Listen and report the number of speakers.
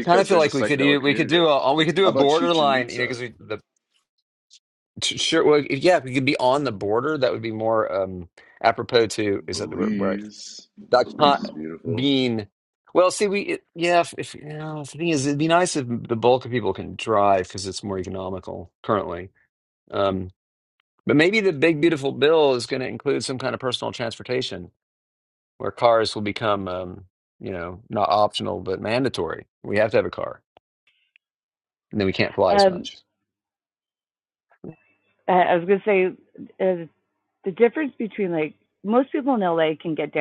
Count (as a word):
three